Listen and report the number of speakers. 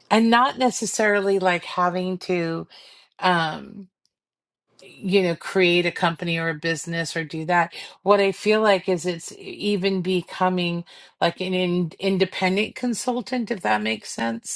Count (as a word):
one